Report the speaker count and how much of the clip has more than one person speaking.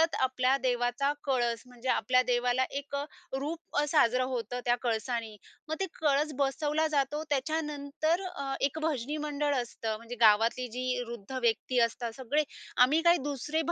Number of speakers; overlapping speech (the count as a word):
one, no overlap